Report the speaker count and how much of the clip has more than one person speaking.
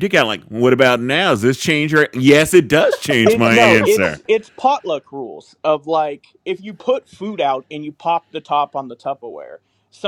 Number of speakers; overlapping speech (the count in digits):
2, about 9%